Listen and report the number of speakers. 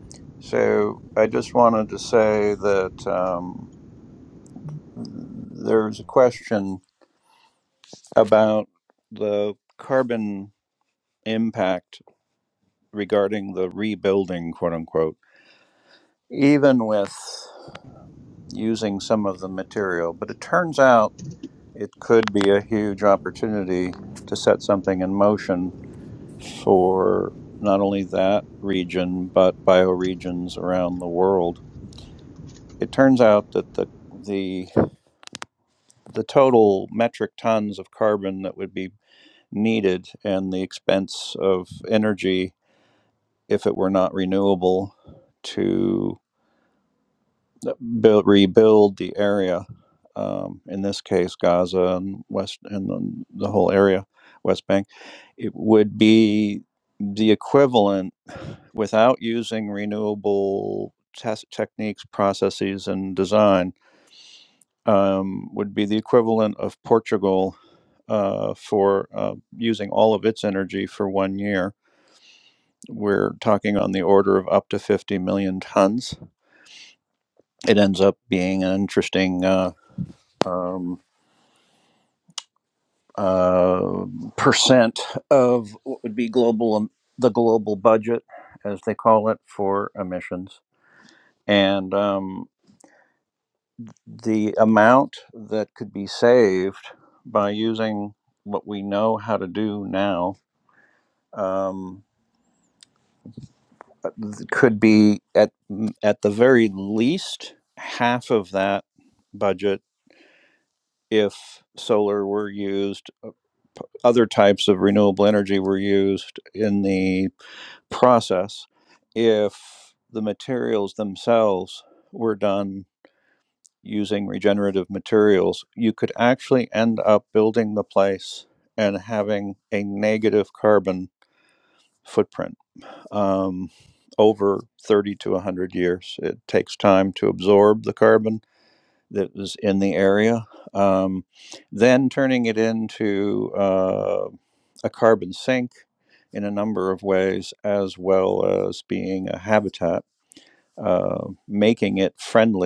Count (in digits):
1